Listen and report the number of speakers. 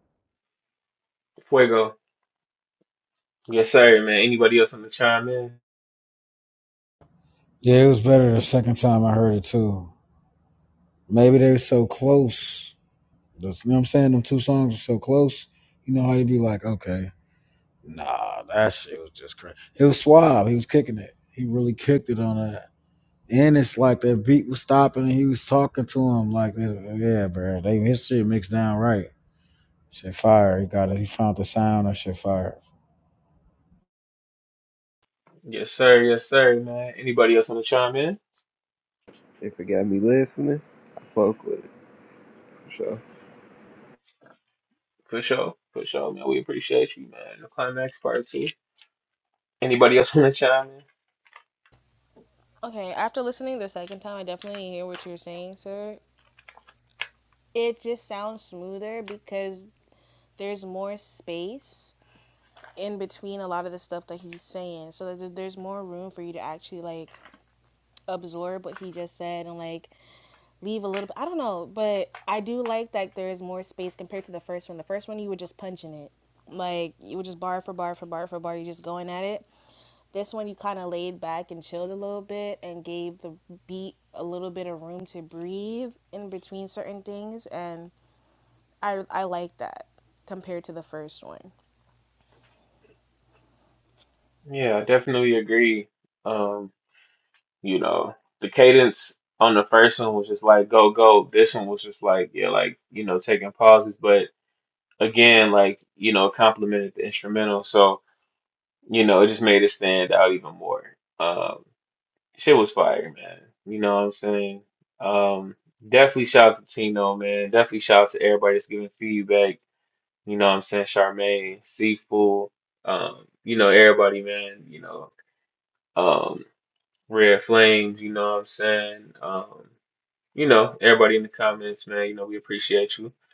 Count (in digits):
4